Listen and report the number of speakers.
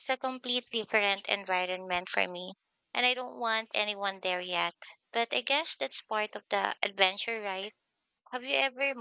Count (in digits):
1